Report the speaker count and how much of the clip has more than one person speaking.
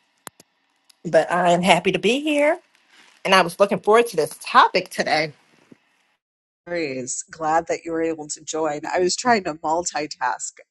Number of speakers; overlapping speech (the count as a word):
two, no overlap